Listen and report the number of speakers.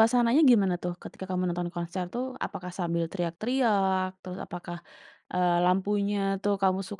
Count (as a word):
one